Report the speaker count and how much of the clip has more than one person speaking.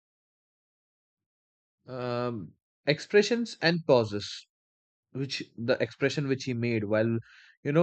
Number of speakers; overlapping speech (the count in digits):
1, no overlap